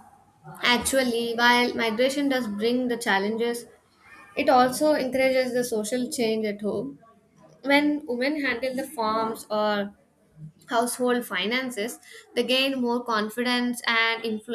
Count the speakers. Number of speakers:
1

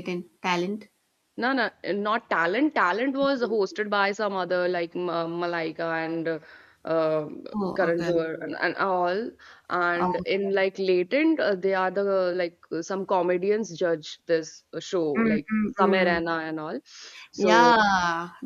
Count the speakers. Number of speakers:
2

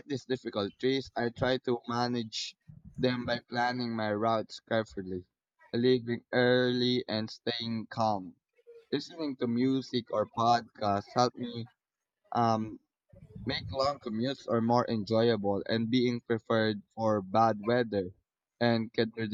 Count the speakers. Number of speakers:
1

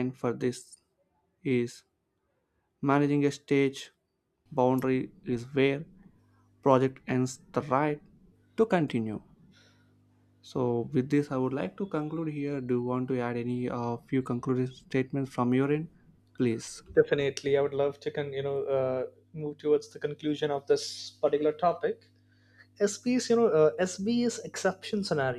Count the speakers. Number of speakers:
2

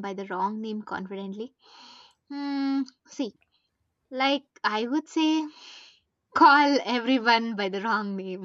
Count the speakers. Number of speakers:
1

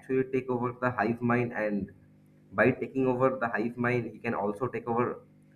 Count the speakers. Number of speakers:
1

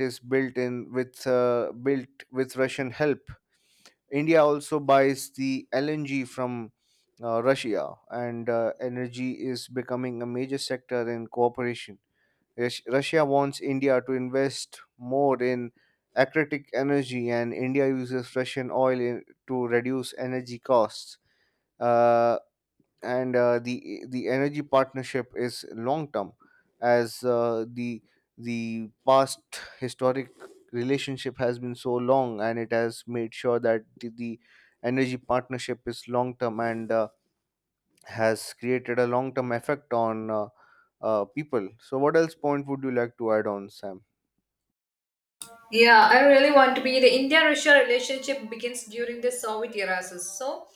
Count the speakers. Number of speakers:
2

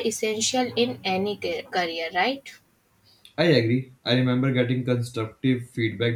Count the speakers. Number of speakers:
2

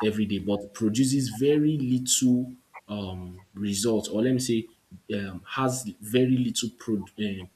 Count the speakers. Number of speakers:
1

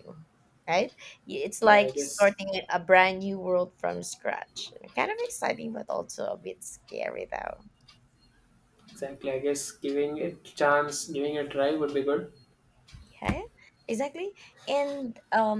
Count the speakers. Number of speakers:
2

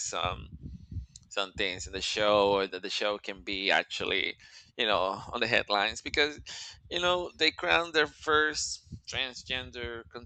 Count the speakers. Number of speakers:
1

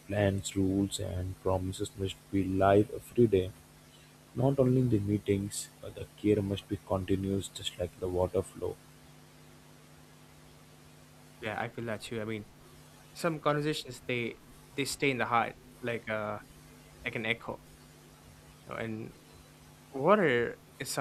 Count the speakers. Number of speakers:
2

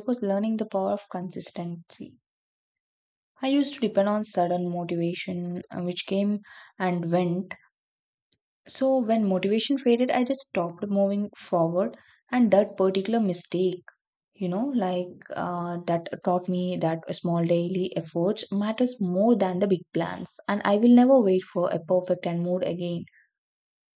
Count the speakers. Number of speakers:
1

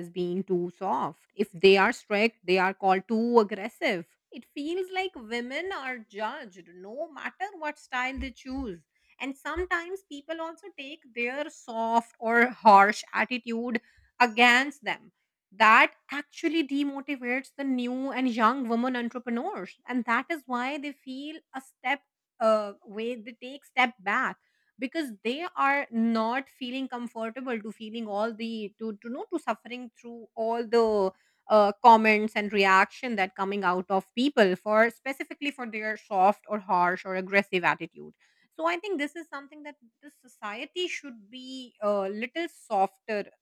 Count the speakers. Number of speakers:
1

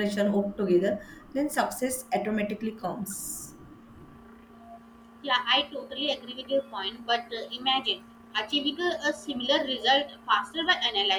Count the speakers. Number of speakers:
2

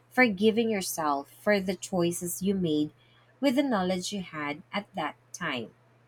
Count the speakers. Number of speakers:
1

